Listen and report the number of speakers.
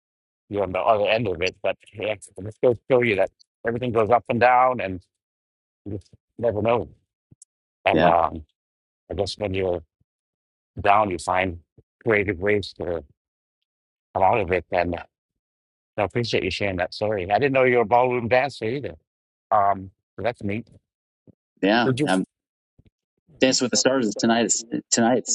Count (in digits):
2